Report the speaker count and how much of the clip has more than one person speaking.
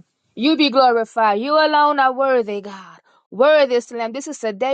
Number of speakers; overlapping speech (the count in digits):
1, no overlap